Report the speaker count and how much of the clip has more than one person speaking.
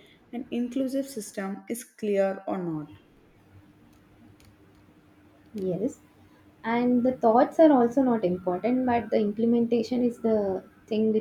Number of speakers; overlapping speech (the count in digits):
2, no overlap